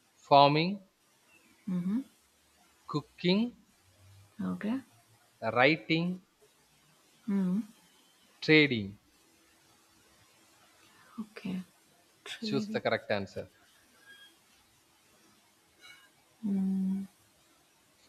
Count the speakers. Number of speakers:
2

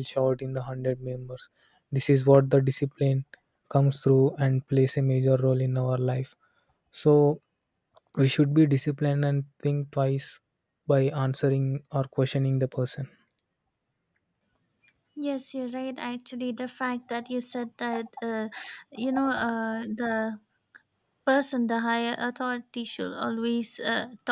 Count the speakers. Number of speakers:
2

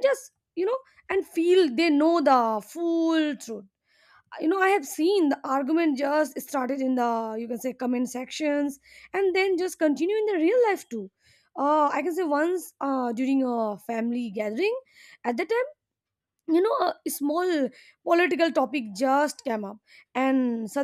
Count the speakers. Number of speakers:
1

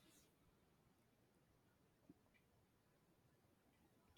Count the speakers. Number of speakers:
0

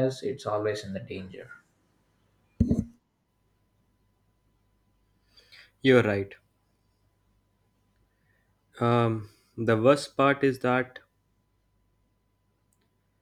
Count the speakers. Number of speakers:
2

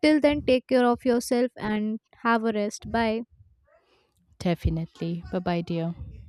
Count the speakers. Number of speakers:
2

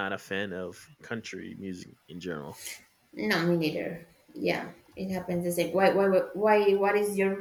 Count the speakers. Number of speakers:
2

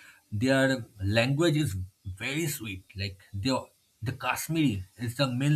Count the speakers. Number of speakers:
1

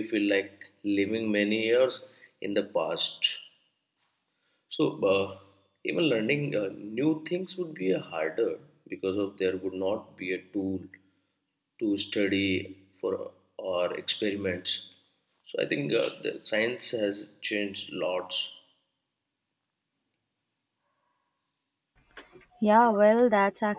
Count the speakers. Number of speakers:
2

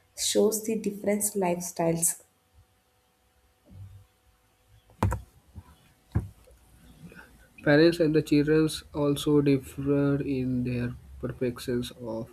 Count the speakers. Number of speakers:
2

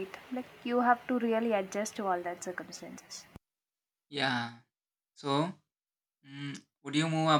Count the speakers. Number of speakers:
2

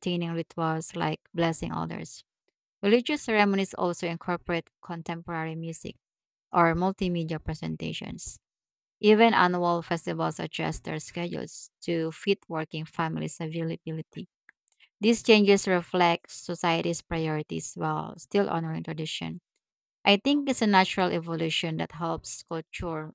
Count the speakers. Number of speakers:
1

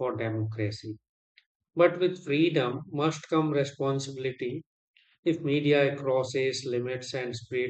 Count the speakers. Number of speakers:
1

